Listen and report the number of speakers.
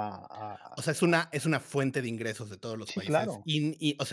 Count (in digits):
2